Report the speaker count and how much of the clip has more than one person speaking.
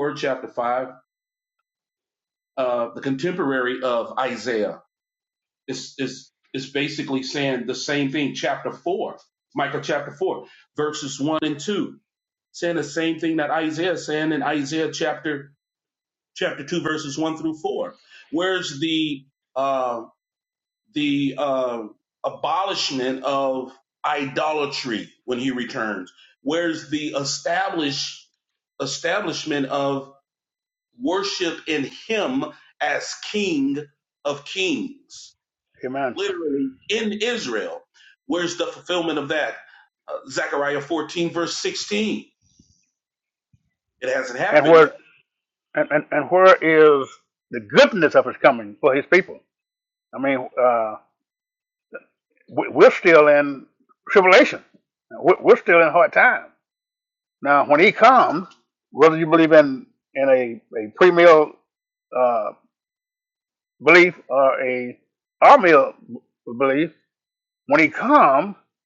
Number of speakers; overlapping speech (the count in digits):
2, about 1%